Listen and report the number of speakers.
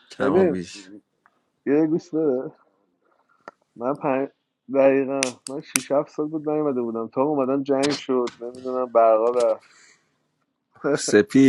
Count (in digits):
2